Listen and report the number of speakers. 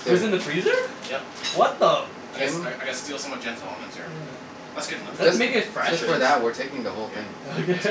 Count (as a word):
three